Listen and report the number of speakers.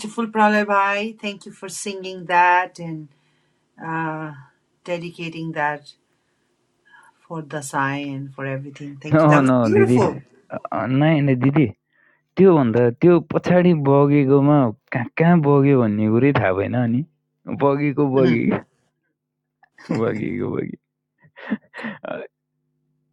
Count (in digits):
2